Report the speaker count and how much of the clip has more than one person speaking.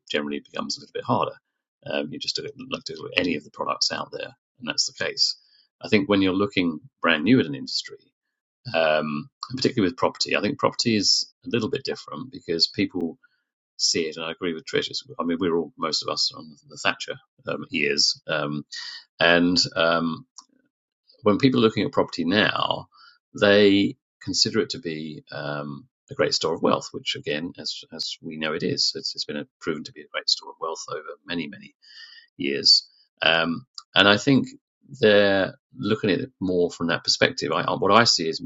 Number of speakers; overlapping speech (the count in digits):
1, no overlap